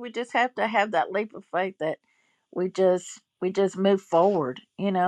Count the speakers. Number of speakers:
one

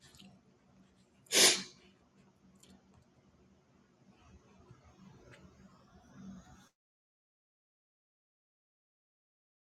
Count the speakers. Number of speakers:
zero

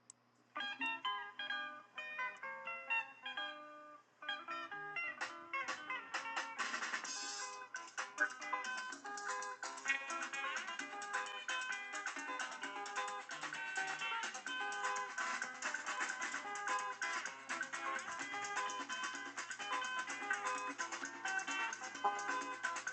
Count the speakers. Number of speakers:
zero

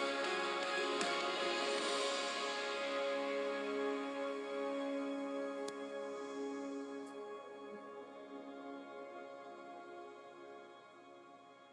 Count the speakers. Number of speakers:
zero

